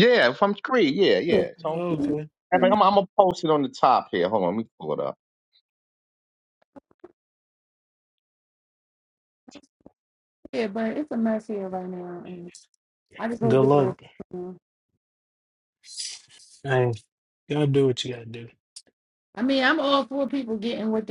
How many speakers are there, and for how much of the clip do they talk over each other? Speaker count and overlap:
3, about 4%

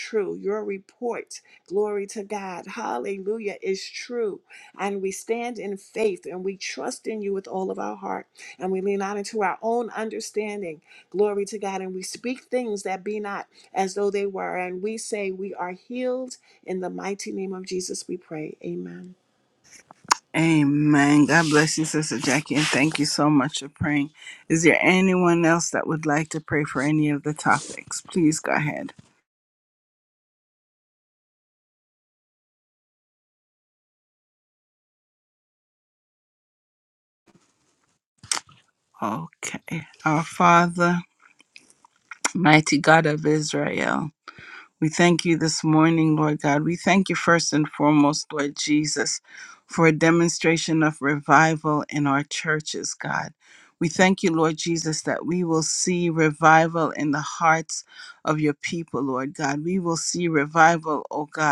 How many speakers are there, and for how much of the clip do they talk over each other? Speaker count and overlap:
2, no overlap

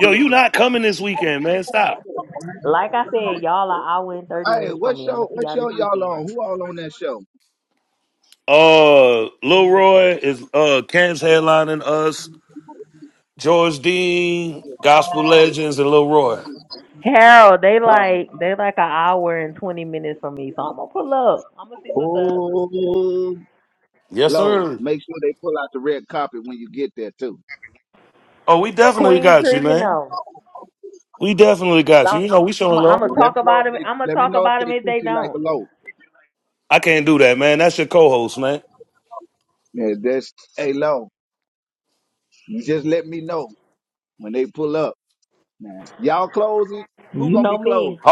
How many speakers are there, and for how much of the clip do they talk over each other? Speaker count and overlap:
3, about 16%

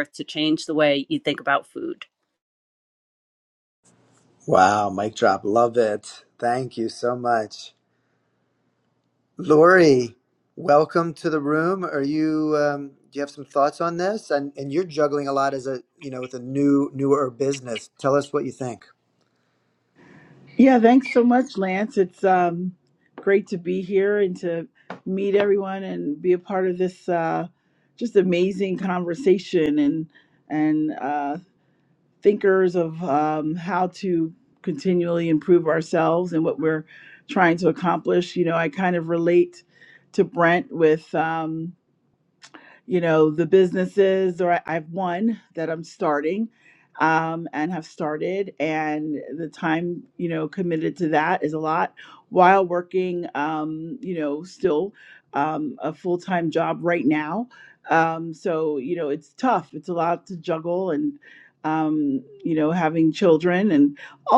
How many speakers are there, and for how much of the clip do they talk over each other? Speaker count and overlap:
3, no overlap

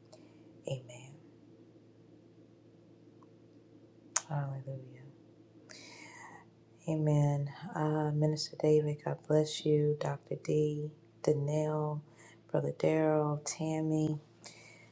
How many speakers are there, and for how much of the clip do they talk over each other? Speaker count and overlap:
1, no overlap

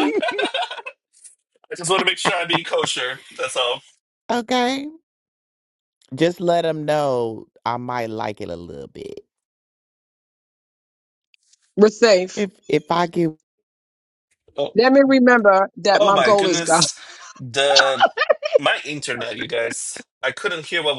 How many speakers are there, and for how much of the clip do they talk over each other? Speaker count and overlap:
3, about 4%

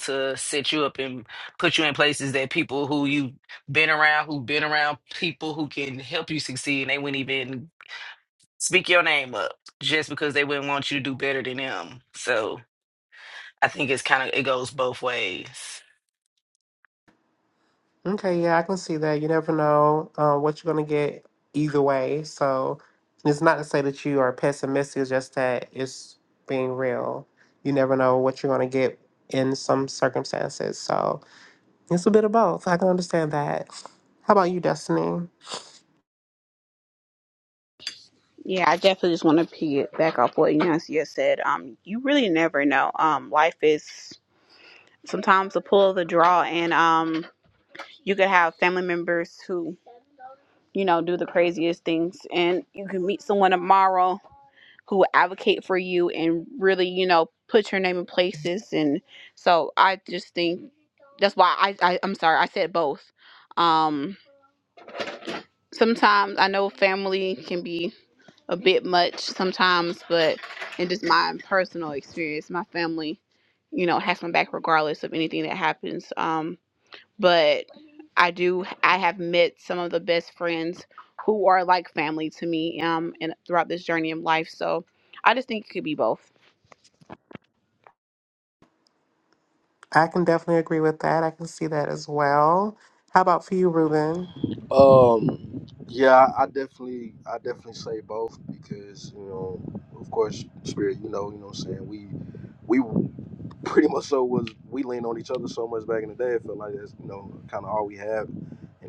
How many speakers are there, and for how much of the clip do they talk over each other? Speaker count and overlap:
4, no overlap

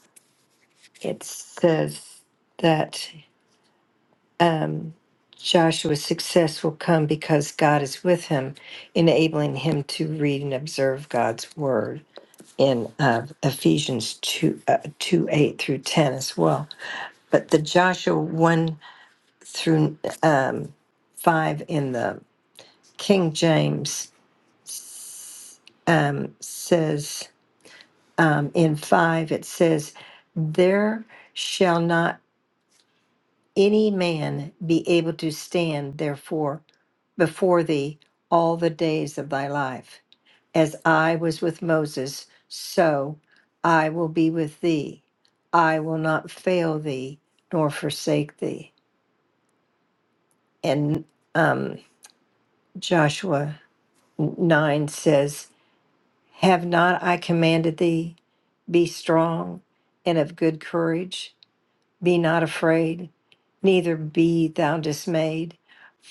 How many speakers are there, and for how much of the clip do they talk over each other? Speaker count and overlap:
1, no overlap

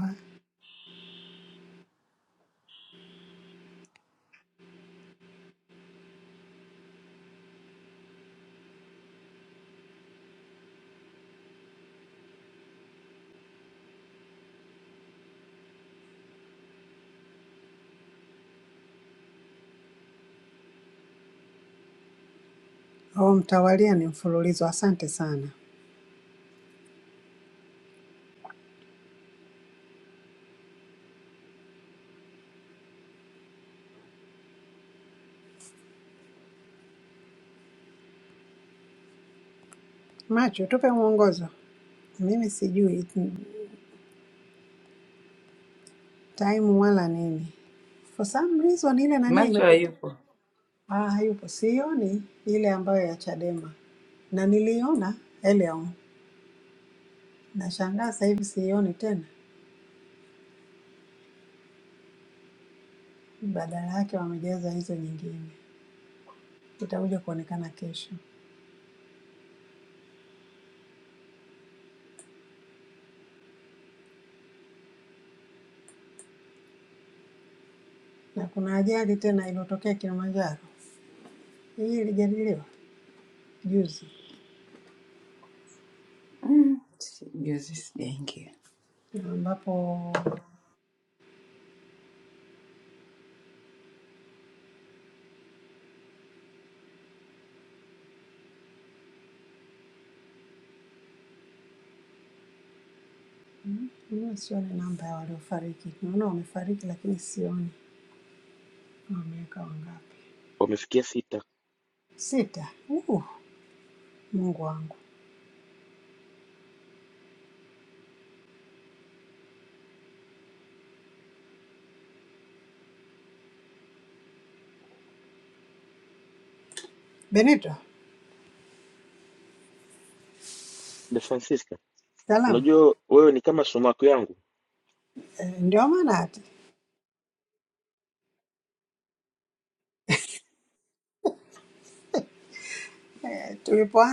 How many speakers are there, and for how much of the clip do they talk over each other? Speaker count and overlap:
3, about 1%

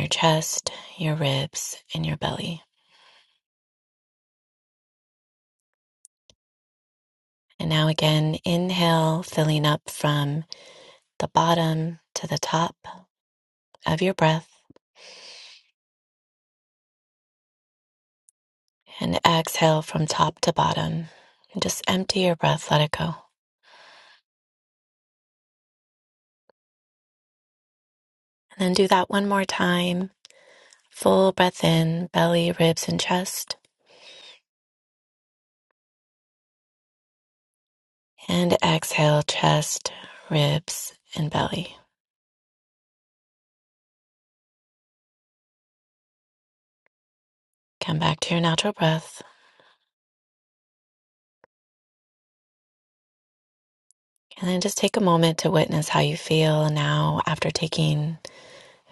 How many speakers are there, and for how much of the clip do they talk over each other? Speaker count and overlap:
1, no overlap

